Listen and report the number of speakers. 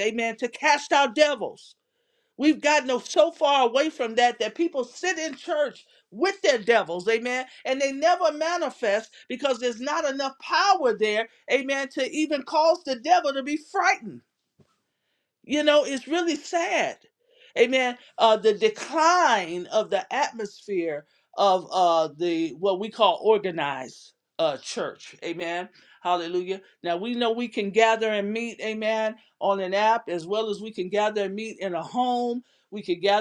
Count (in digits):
1